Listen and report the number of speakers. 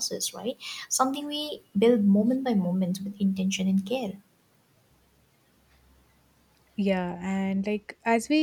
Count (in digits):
2